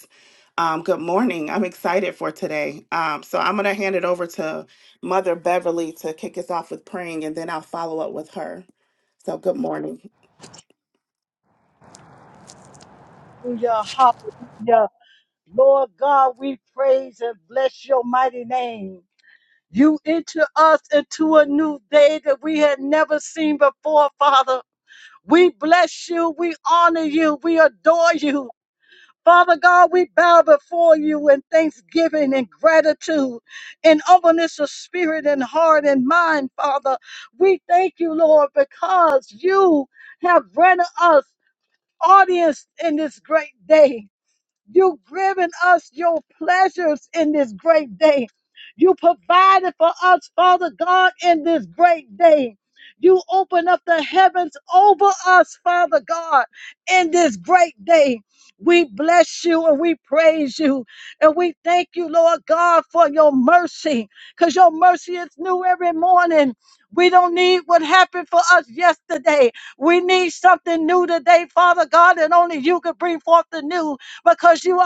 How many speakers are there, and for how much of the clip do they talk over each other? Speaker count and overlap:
2, no overlap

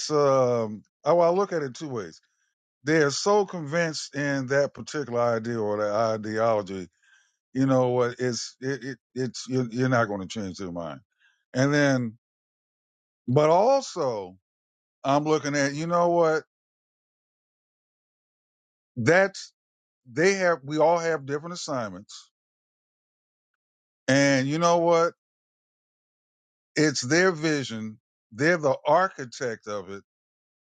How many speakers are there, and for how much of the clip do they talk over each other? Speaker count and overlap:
1, no overlap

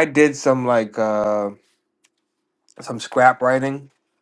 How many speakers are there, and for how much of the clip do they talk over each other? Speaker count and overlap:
1, no overlap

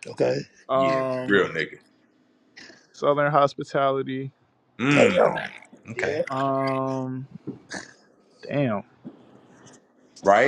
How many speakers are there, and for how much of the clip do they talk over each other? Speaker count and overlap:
3, about 12%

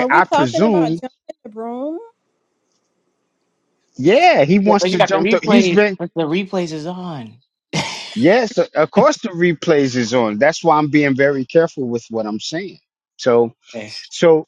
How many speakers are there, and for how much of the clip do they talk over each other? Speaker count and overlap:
3, about 16%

